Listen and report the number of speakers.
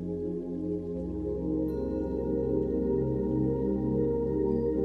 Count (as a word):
zero